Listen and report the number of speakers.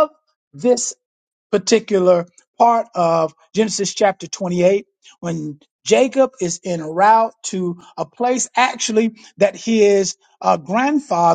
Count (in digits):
1